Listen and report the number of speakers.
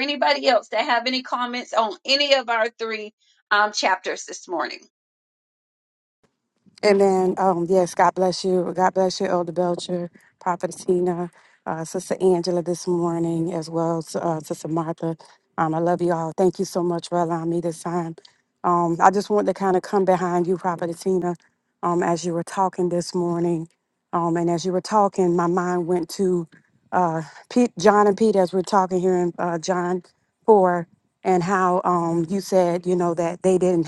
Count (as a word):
two